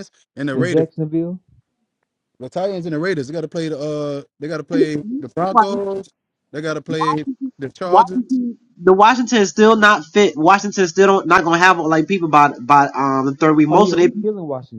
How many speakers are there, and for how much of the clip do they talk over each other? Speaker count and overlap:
three, about 7%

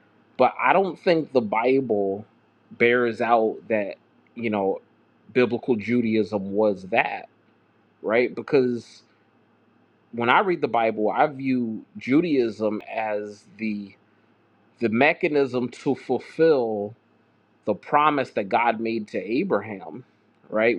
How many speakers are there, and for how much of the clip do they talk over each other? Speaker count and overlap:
one, no overlap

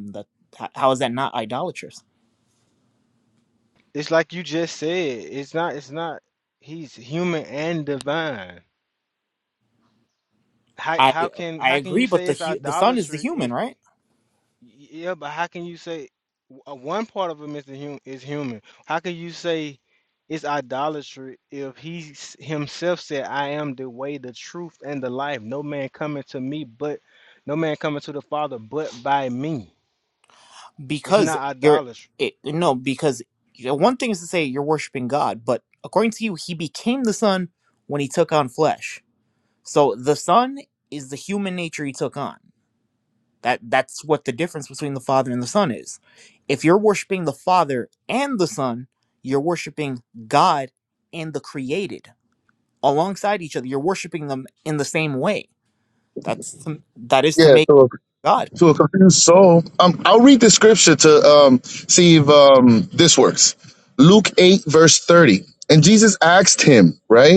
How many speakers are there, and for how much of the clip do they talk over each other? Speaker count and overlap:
three, about 5%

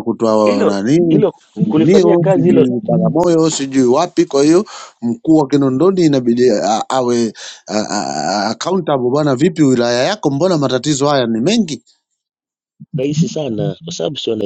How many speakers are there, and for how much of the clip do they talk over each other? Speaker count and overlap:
two, about 10%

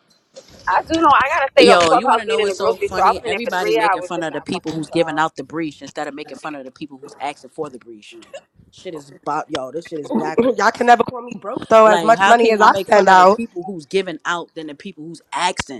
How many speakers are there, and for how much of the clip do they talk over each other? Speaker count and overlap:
three, about 35%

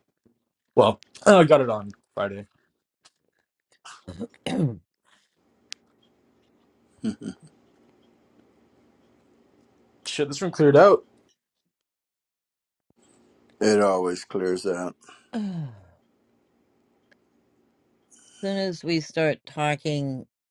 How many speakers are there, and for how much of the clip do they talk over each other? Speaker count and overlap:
three, no overlap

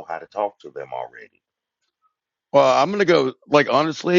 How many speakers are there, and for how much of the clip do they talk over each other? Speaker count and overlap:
two, no overlap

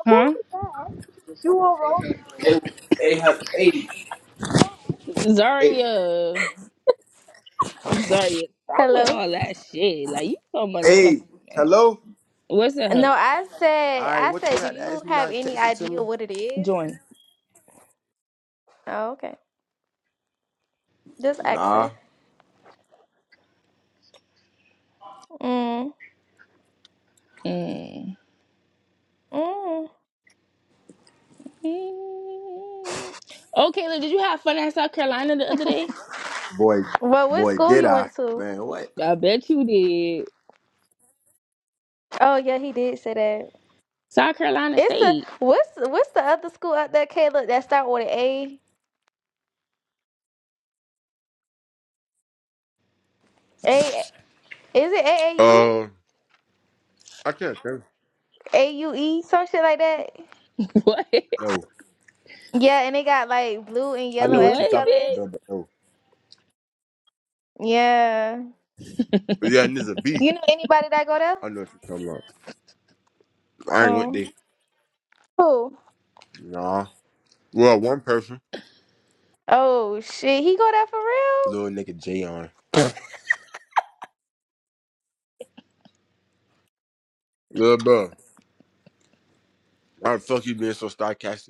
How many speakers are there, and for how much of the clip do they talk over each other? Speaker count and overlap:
three, about 9%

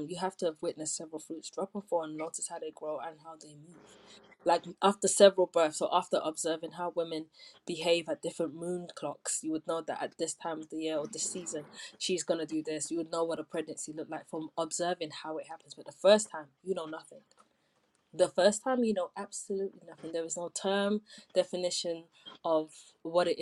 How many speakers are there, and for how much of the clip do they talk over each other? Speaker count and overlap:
one, no overlap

